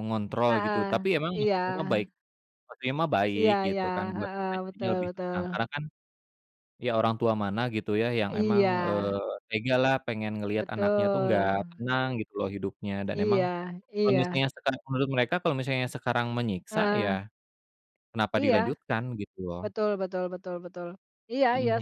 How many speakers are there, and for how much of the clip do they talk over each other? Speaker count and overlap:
two, about 29%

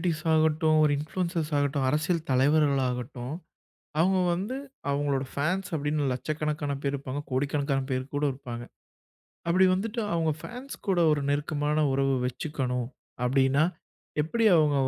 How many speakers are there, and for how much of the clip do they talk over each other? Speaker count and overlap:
one, no overlap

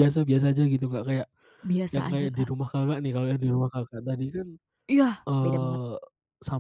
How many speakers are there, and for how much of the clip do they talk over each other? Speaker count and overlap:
two, about 13%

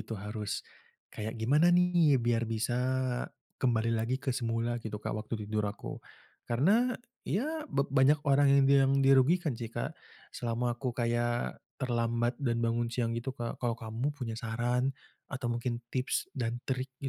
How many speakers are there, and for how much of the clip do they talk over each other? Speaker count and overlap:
one, no overlap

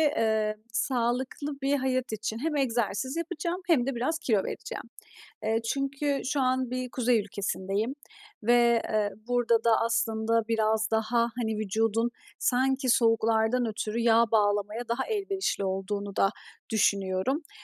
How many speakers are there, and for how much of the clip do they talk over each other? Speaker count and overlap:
one, no overlap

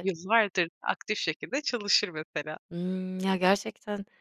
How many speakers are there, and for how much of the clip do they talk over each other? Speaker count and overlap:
two, about 2%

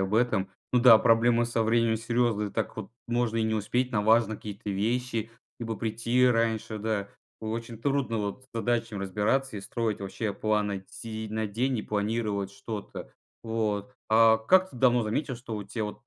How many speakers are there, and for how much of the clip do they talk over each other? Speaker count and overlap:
one, no overlap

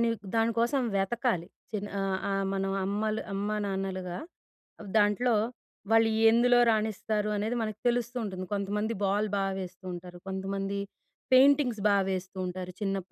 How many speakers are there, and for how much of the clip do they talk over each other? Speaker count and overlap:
one, no overlap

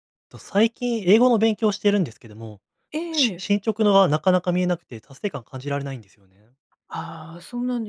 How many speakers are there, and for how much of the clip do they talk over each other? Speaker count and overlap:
two, about 4%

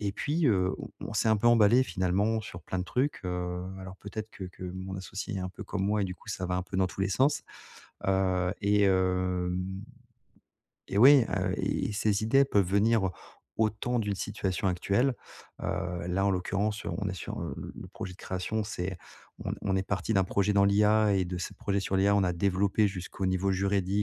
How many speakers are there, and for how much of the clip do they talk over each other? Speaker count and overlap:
one, no overlap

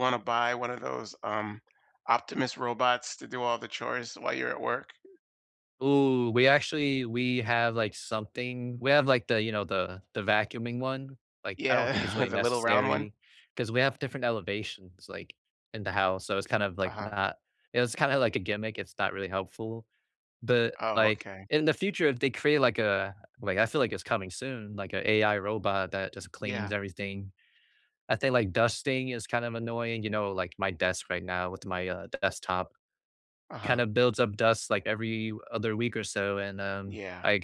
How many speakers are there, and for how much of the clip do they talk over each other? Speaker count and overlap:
two, about 9%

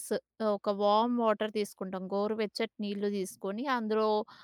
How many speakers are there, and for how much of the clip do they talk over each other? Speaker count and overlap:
one, no overlap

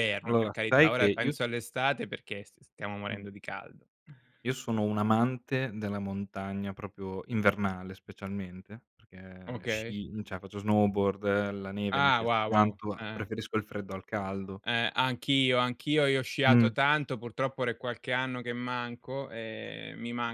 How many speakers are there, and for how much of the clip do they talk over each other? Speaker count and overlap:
two, about 16%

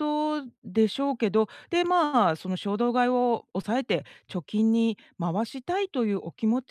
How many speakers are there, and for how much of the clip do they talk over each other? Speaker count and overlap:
one, no overlap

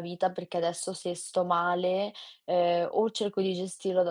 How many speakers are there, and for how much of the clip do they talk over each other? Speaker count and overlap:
one, no overlap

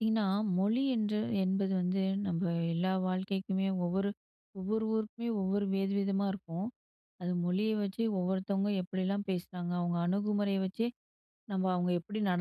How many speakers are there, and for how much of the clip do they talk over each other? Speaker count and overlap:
one, no overlap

